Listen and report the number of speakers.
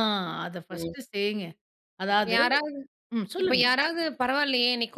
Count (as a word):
two